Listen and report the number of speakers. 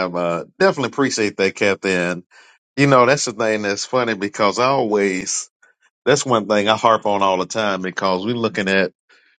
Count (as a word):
one